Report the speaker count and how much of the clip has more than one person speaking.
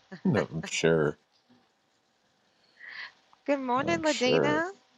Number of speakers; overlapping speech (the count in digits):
2, about 16%